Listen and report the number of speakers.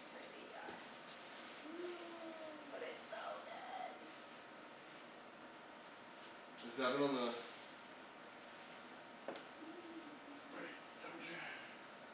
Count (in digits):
2